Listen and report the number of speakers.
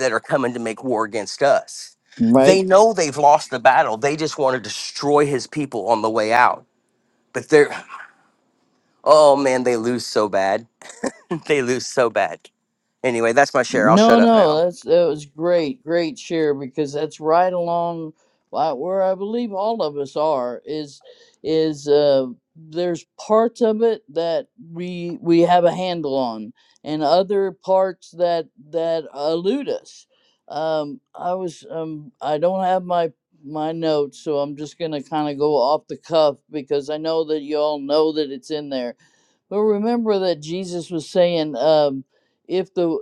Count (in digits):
2